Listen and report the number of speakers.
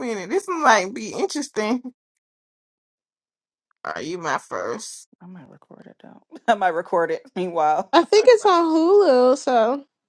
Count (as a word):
three